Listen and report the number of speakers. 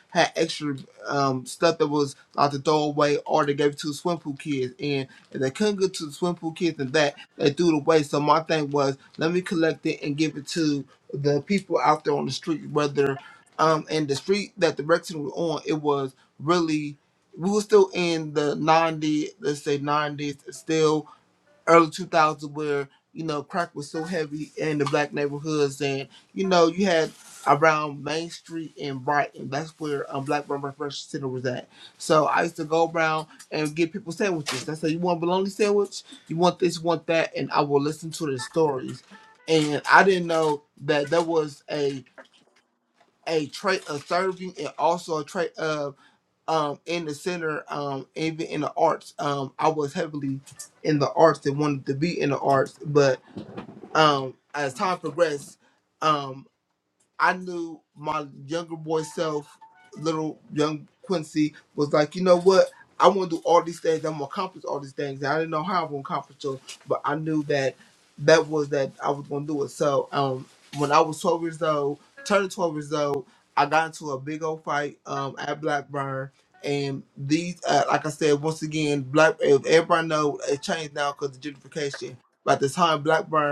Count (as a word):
one